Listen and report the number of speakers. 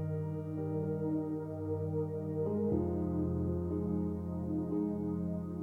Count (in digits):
0